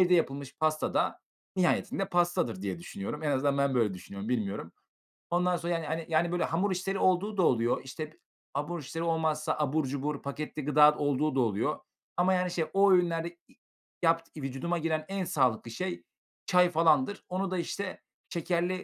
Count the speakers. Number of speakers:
one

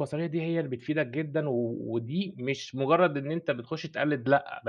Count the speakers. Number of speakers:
one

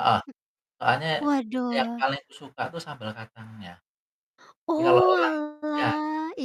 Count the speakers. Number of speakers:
two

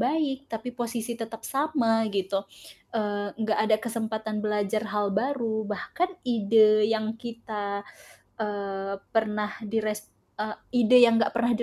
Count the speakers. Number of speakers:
one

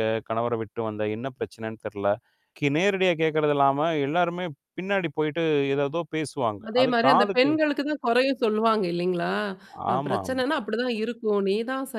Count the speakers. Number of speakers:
two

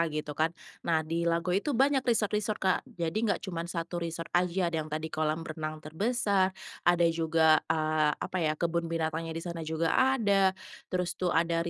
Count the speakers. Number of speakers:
one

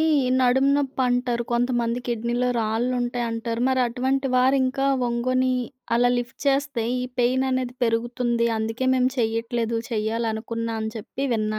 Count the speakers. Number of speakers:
one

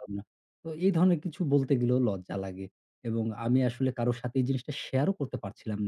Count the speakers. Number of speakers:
one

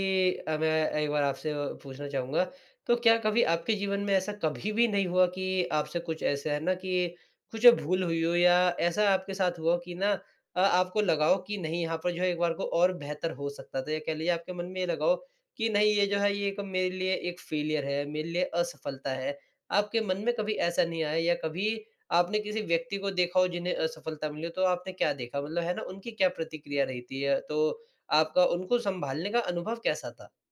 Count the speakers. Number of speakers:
one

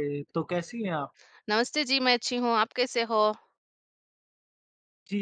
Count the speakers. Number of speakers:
two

